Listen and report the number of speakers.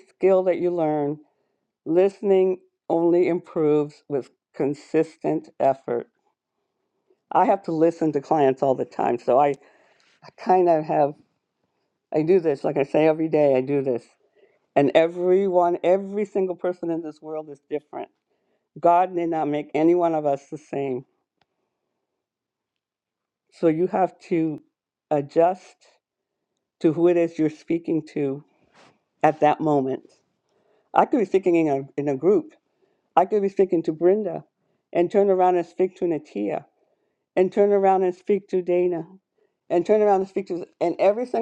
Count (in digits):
1